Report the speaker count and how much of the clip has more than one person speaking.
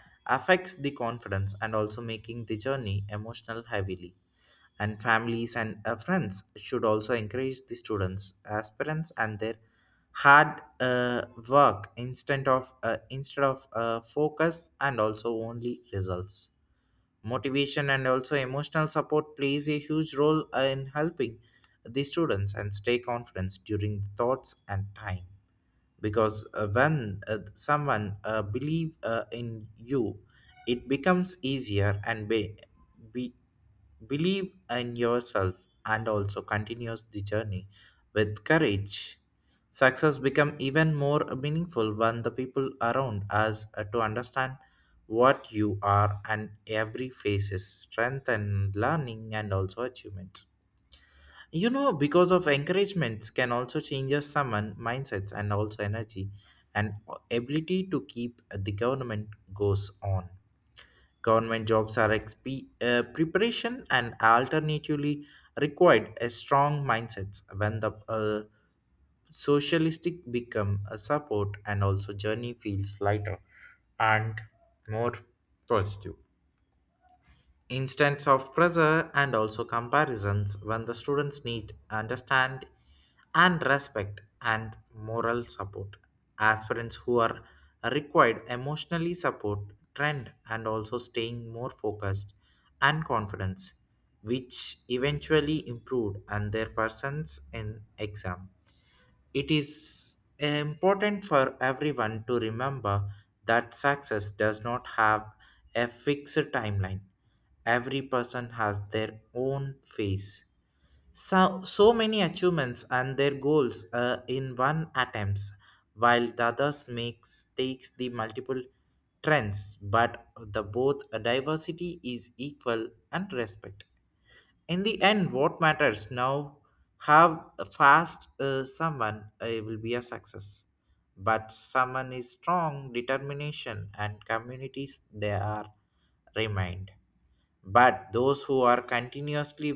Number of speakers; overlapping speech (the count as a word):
one, no overlap